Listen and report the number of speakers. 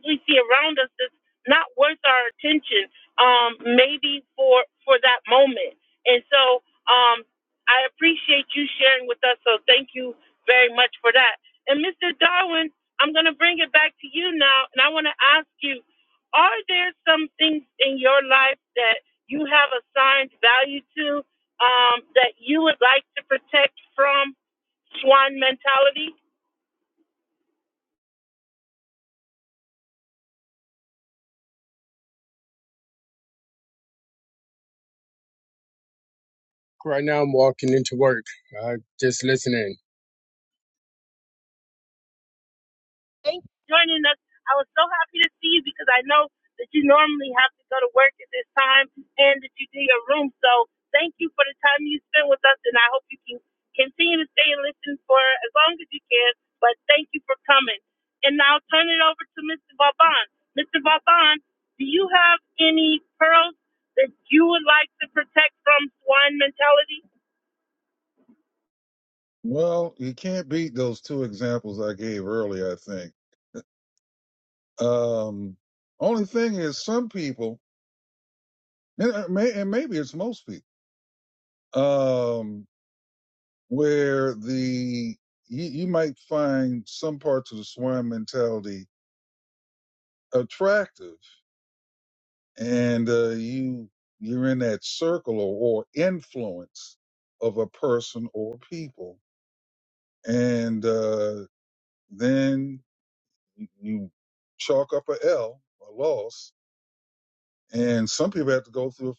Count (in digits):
3